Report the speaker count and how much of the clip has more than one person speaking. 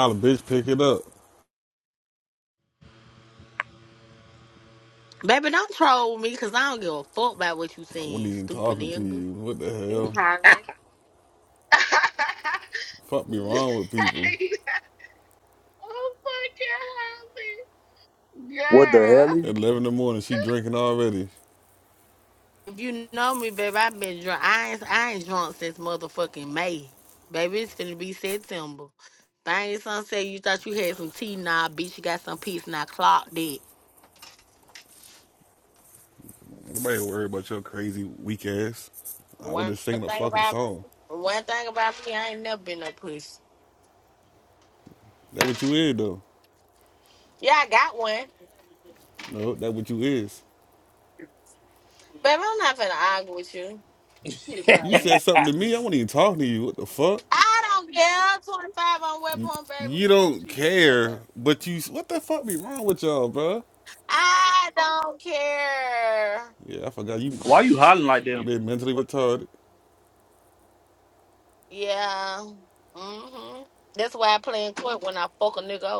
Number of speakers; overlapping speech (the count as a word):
four, about 5%